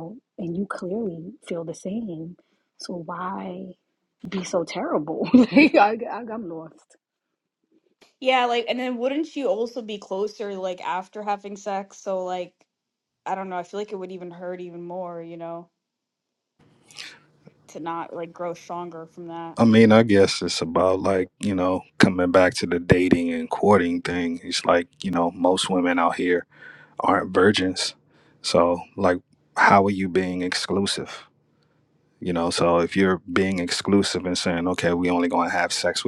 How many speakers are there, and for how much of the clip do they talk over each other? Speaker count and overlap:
three, no overlap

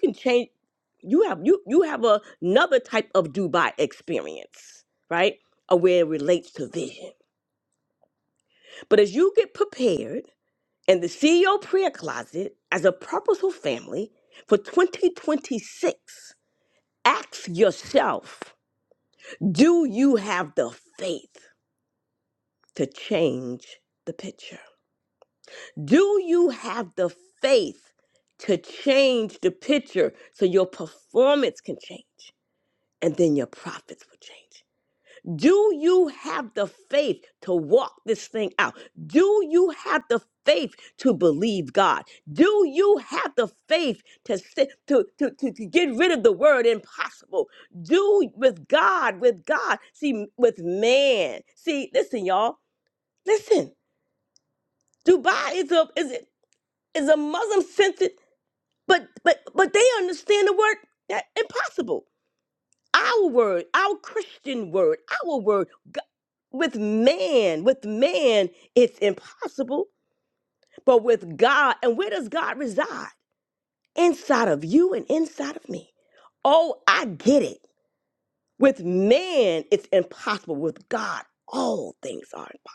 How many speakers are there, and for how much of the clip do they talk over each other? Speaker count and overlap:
one, no overlap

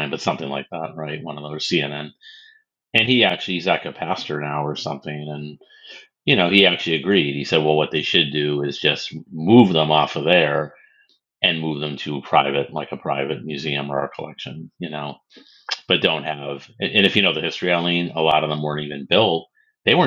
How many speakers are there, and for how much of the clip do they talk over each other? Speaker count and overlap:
one, no overlap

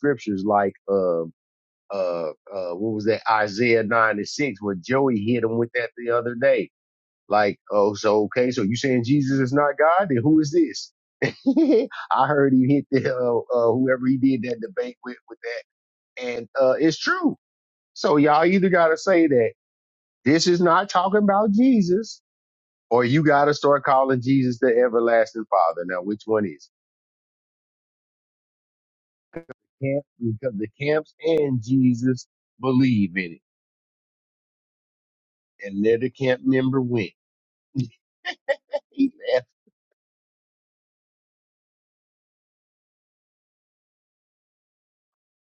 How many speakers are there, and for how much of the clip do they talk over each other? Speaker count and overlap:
one, no overlap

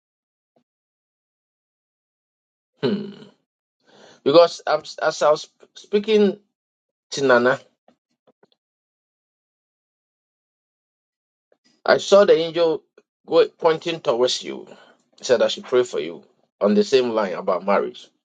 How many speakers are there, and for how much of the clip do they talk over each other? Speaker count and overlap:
one, no overlap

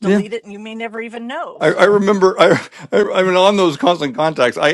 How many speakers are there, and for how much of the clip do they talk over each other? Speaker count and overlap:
two, about 14%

